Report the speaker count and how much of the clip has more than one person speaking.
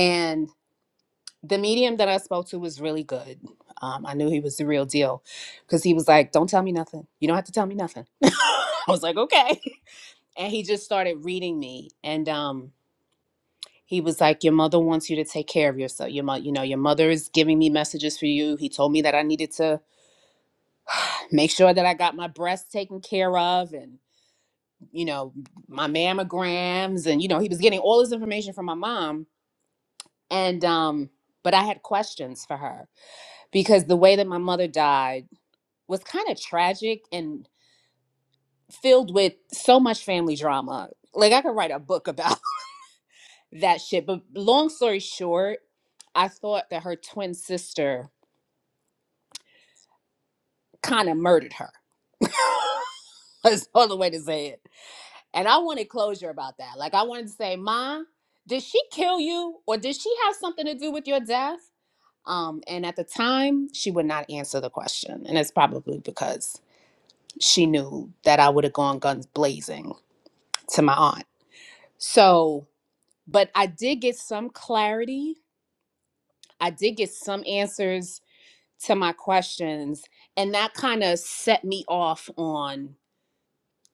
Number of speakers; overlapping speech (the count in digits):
1, no overlap